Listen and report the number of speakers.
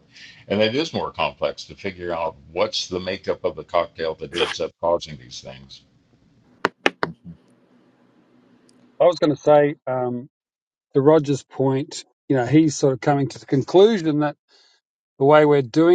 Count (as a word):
two